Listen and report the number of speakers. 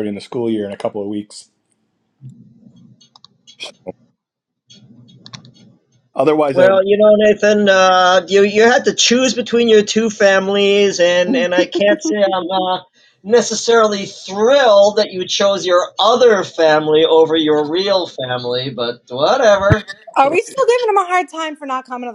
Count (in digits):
3